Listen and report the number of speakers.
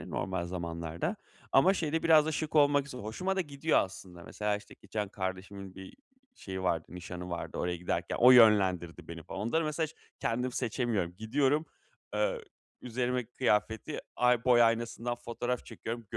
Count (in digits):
1